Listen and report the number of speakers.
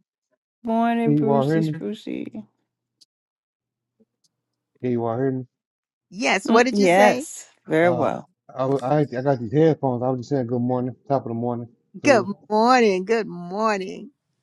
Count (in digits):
3